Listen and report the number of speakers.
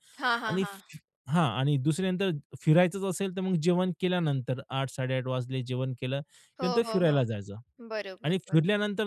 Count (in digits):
2